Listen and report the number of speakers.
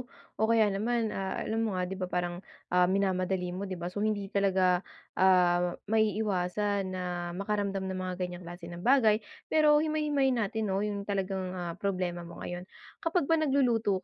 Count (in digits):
1